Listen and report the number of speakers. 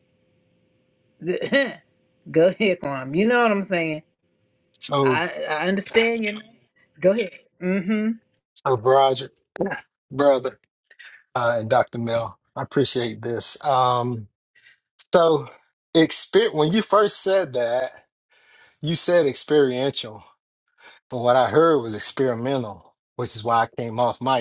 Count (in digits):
2